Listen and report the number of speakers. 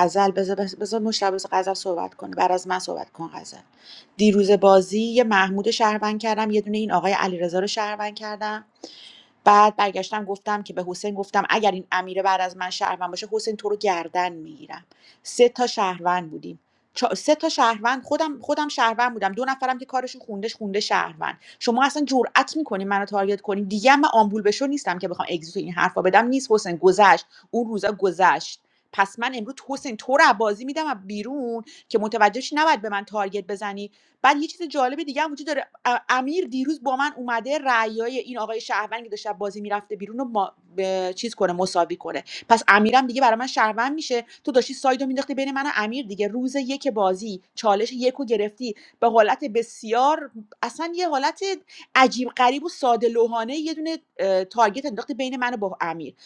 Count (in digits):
1